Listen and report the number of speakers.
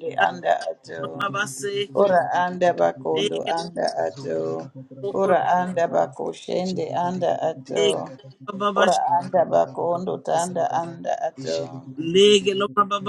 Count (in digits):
3